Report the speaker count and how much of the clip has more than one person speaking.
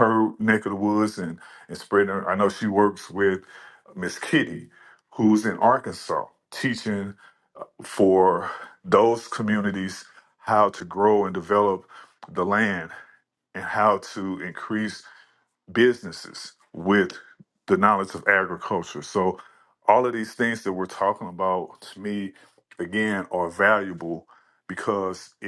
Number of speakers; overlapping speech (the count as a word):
one, no overlap